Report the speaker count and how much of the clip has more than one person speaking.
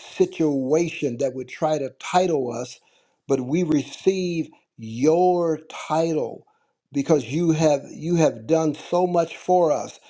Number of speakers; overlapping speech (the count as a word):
one, no overlap